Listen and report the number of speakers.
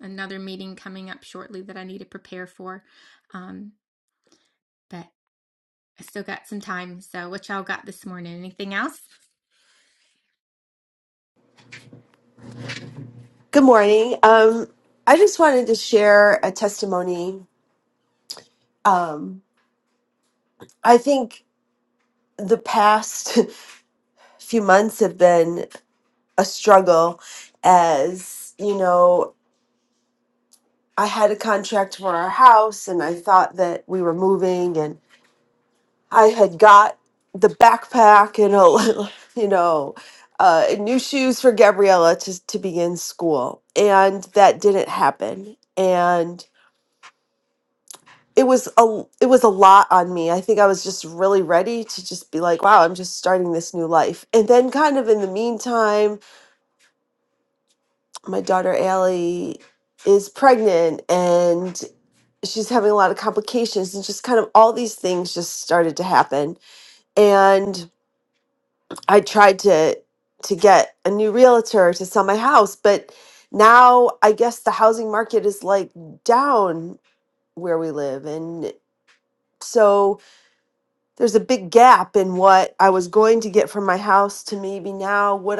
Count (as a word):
two